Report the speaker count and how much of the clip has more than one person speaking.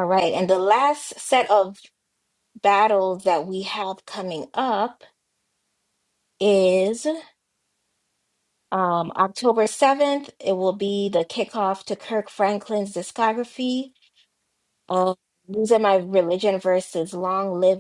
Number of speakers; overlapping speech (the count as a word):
one, no overlap